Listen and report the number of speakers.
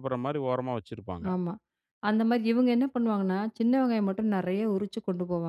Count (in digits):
2